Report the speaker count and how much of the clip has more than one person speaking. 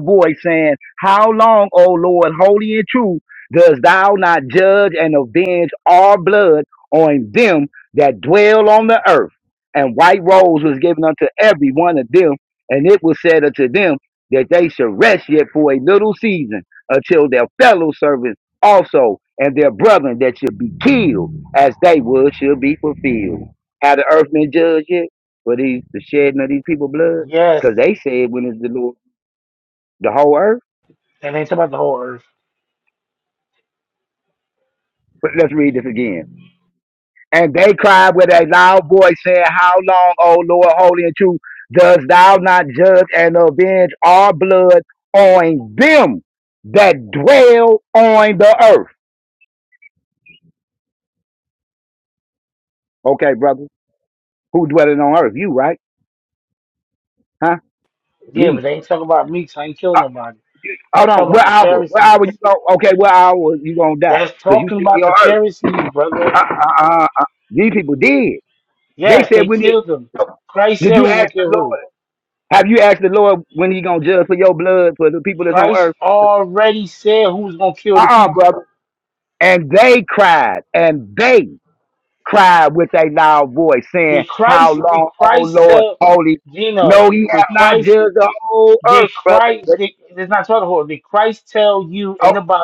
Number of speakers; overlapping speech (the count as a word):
two, about 10%